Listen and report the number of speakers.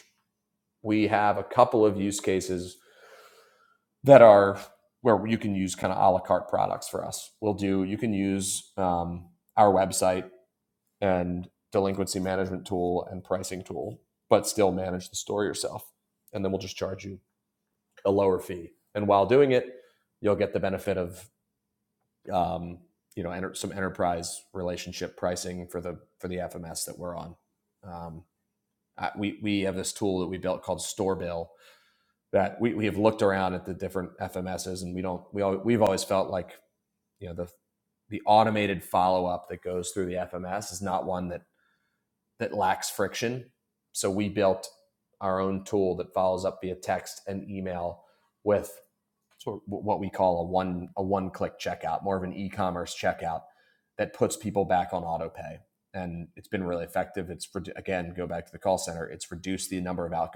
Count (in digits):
1